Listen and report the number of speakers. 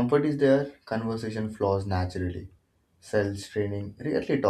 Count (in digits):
1